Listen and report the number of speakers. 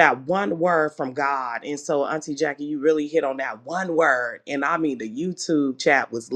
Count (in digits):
1